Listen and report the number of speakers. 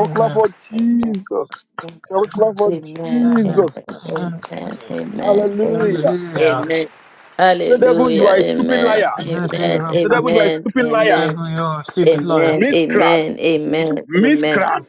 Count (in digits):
3